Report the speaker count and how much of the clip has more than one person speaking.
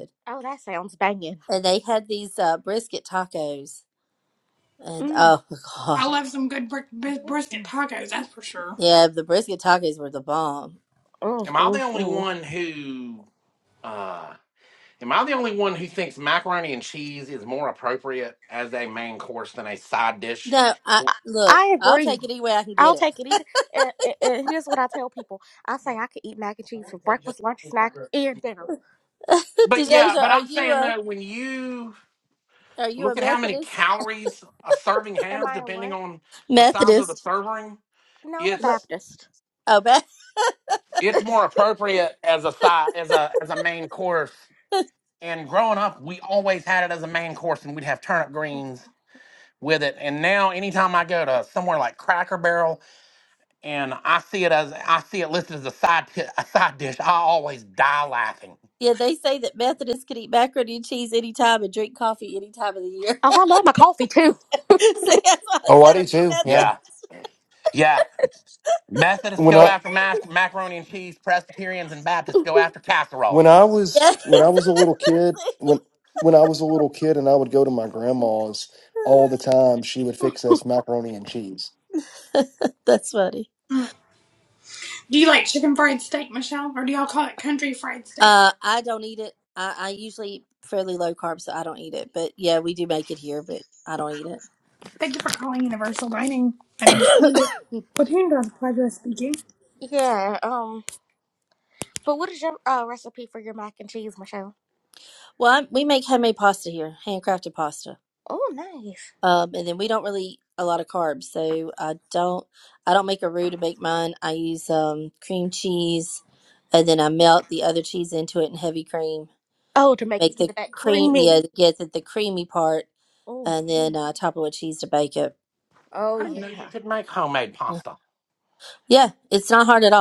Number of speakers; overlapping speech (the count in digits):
5, about 7%